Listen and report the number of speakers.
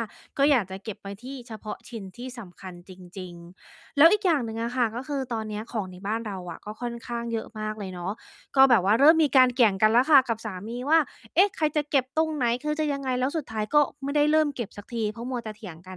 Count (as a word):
one